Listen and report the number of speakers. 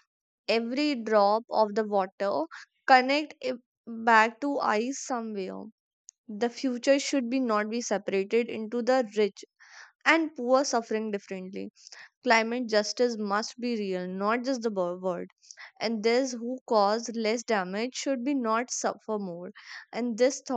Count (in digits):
1